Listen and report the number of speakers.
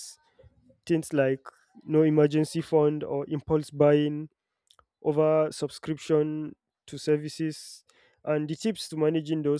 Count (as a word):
one